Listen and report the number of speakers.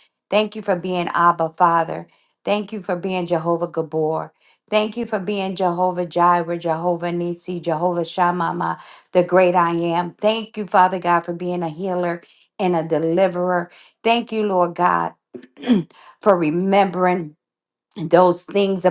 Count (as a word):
one